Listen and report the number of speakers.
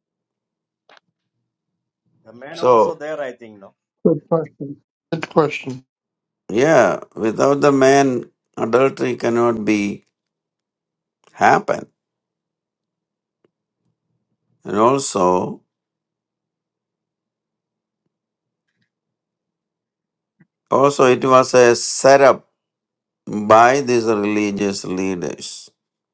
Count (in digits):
3